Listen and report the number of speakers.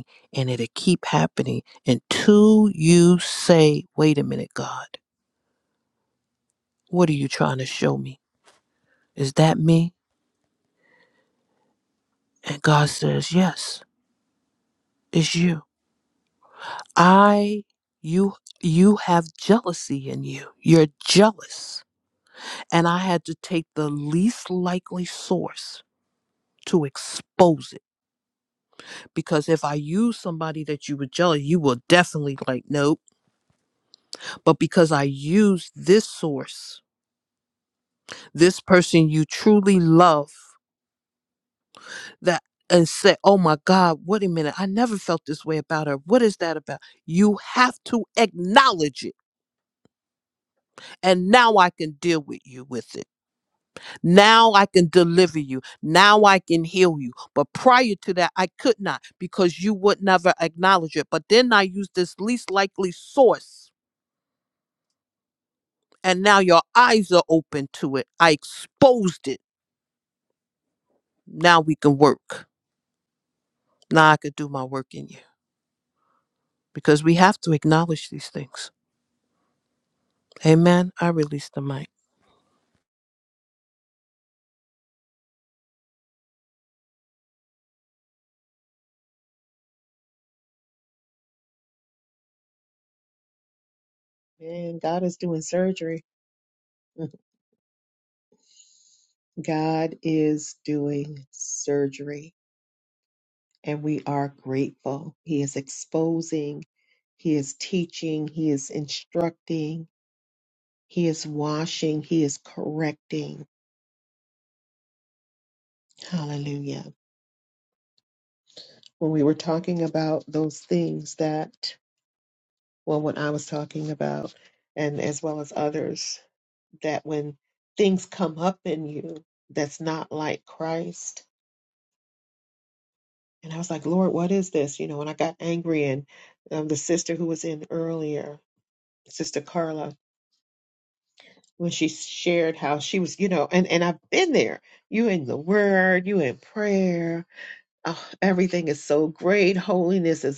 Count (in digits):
2